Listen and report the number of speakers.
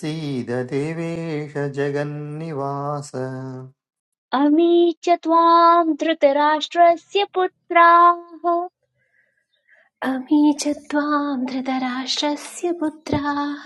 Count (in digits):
3